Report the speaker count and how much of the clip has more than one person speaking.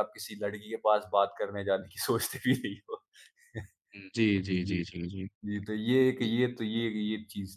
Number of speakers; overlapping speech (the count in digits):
2, about 7%